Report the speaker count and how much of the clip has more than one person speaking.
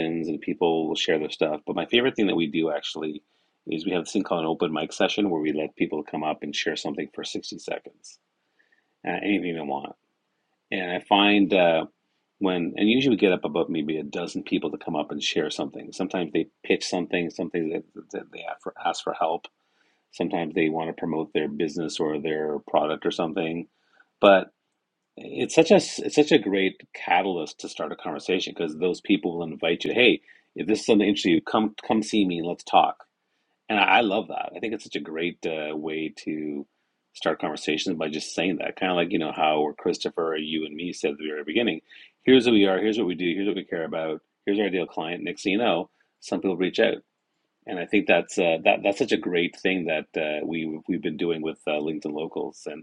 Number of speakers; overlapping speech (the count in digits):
1, no overlap